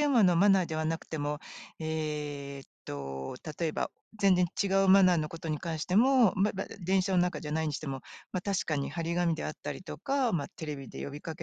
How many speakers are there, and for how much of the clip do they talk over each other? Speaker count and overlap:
1, no overlap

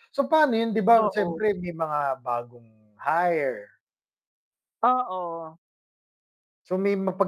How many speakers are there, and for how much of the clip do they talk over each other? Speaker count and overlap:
2, about 6%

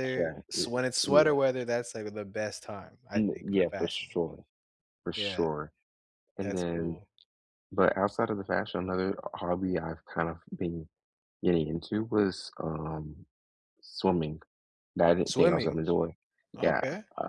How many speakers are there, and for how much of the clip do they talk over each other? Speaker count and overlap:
2, about 20%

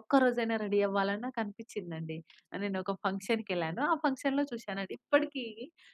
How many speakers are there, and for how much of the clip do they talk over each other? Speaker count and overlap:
1, no overlap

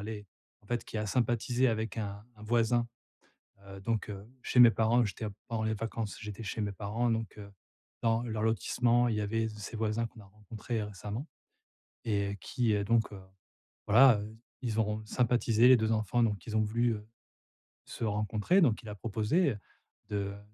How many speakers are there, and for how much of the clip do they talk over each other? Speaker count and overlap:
1, no overlap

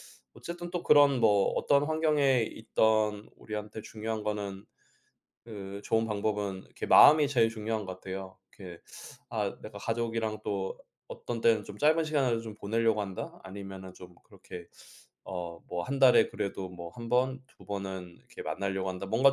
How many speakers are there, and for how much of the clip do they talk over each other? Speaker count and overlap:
1, no overlap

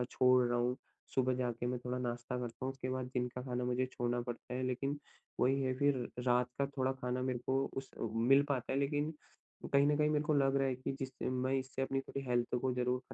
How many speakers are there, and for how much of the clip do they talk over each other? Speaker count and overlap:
1, no overlap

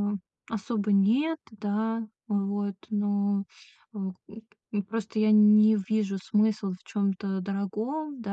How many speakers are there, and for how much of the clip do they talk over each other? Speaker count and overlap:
1, no overlap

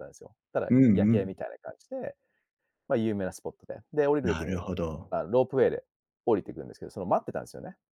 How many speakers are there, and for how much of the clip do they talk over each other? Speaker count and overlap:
2, about 13%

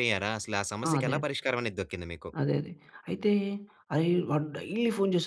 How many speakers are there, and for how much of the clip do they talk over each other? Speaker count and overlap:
2, about 8%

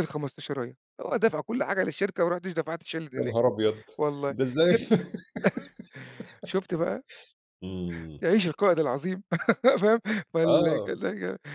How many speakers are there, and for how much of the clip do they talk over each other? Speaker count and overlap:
2, about 7%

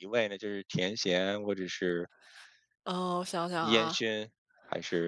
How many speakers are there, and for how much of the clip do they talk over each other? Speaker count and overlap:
2, about 7%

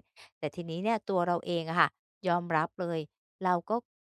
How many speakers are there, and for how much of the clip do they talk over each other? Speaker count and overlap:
1, no overlap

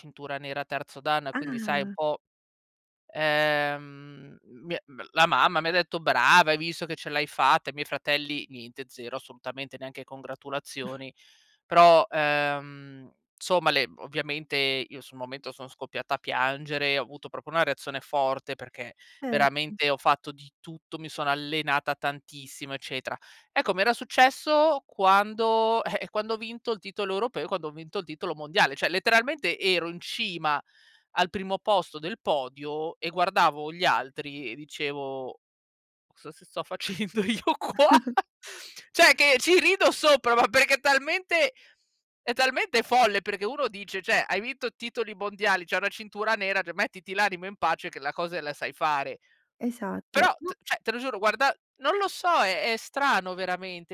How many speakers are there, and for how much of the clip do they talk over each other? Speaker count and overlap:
2, about 3%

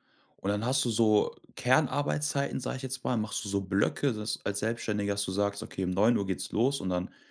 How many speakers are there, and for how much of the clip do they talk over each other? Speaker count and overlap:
1, no overlap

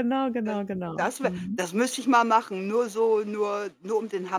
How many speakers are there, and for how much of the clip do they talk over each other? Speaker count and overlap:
2, about 17%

